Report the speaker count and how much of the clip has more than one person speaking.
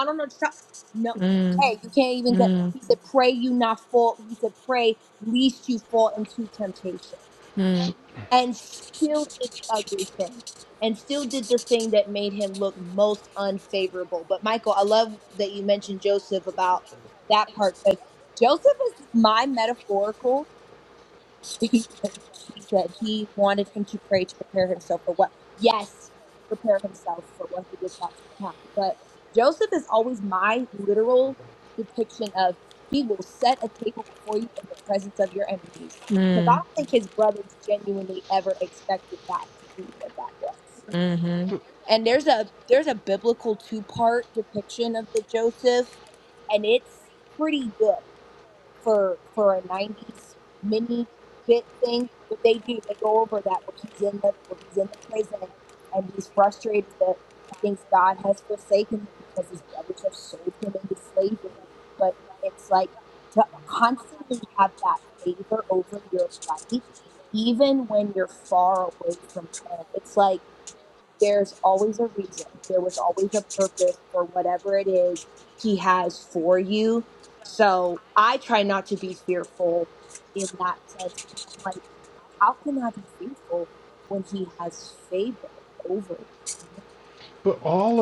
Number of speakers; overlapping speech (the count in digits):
3, about 1%